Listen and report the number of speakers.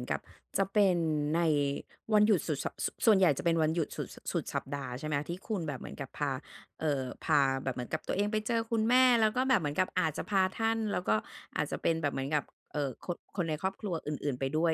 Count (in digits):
1